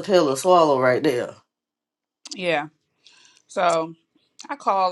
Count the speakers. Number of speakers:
two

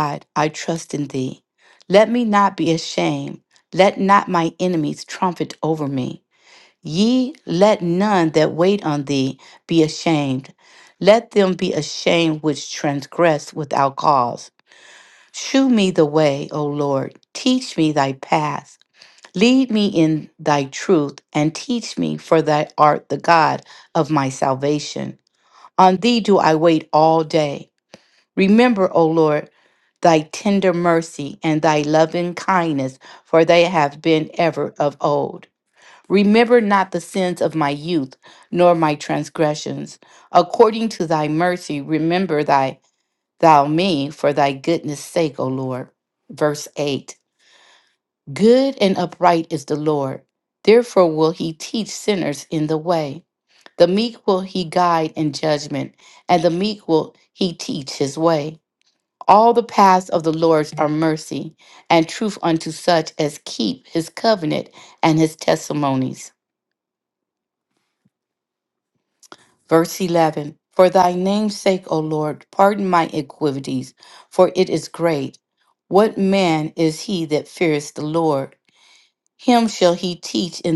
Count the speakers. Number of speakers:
one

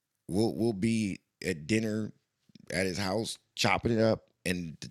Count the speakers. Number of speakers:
one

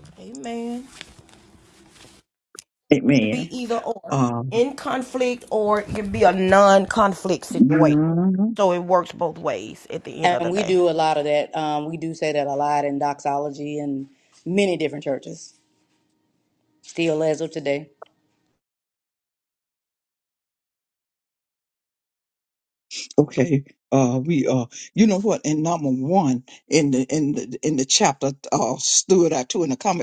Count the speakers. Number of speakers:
three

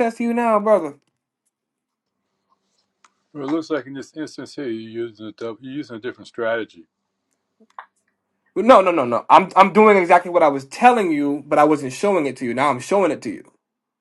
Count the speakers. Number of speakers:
two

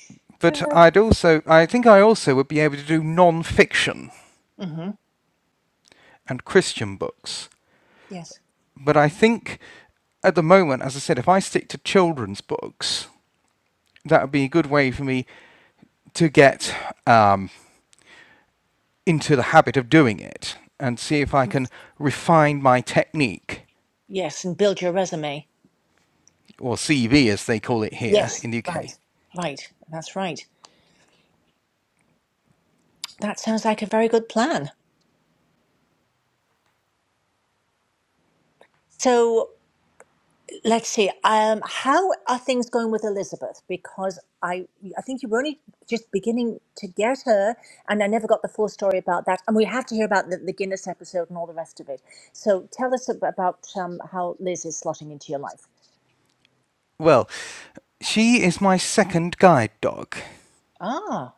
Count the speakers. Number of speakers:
two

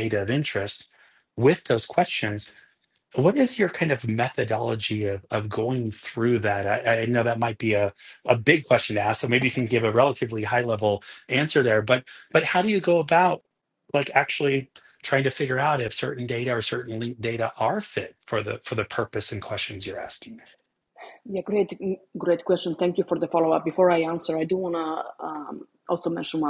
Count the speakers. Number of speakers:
two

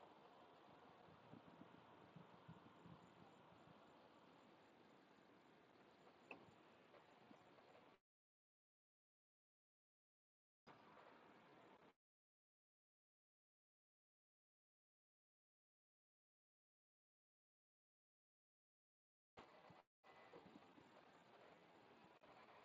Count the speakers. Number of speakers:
zero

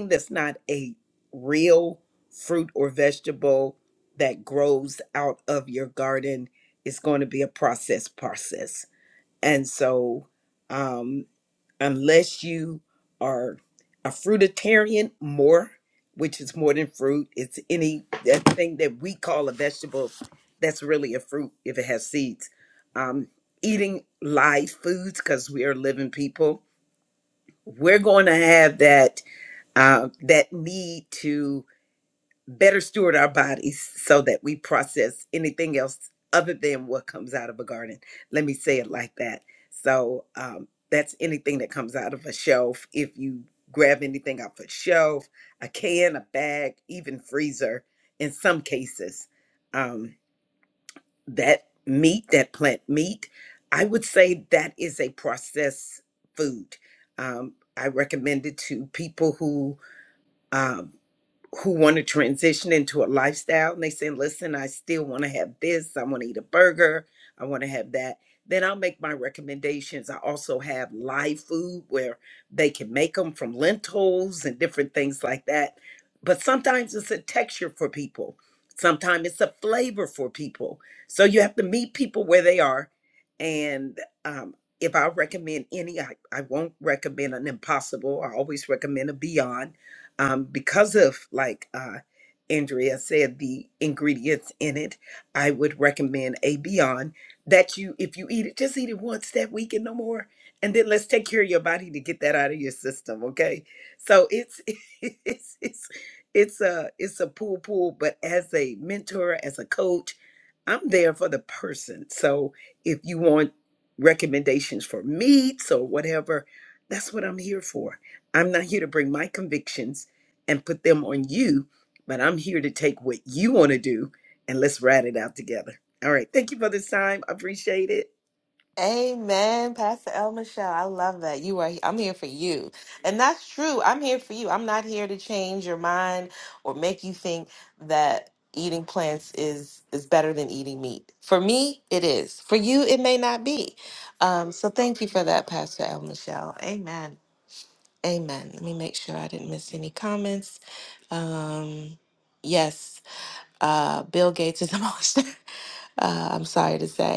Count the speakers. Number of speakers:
two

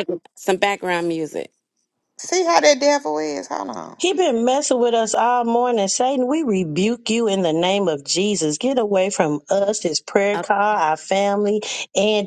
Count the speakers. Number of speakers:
three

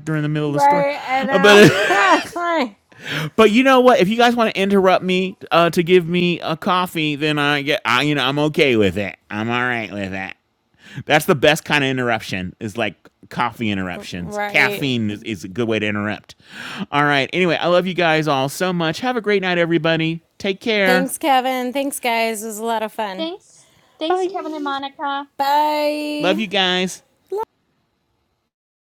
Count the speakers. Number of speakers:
three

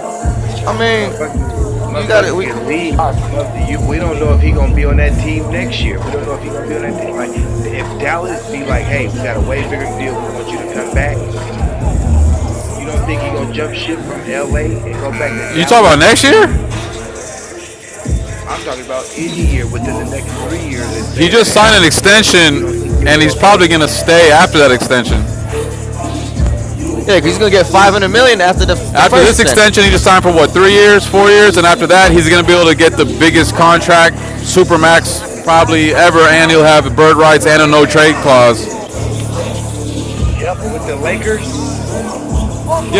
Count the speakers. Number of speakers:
three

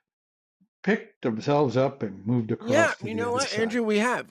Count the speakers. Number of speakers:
two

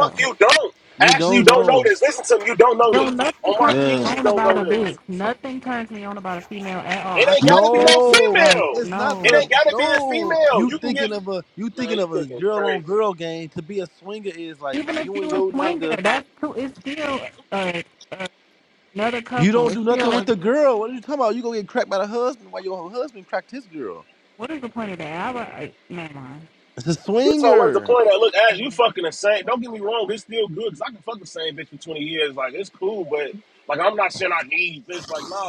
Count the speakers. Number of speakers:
three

